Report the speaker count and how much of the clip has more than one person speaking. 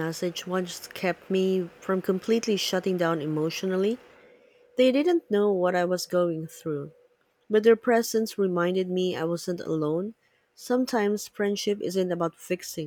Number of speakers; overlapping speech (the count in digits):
1, no overlap